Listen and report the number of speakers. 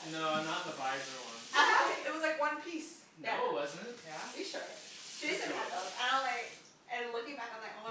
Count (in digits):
3